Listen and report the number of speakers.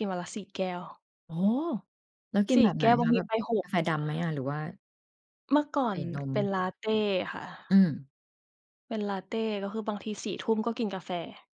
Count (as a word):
two